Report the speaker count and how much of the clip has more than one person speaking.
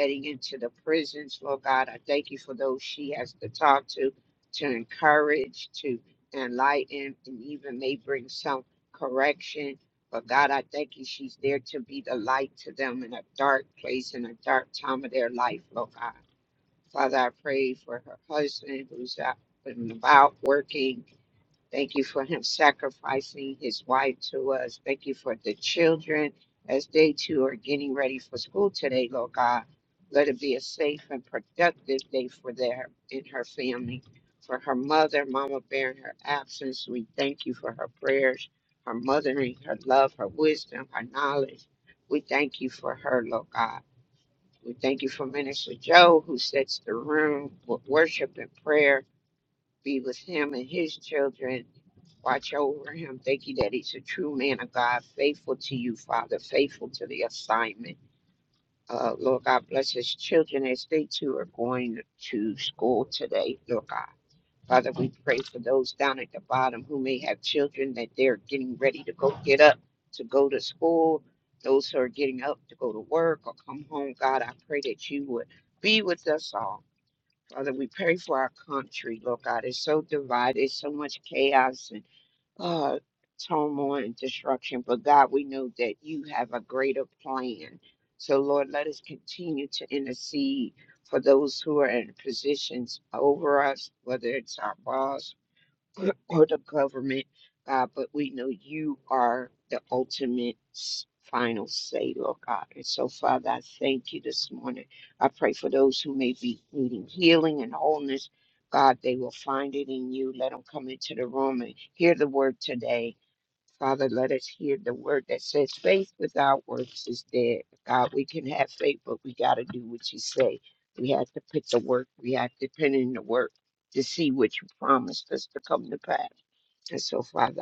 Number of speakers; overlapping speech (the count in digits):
1, no overlap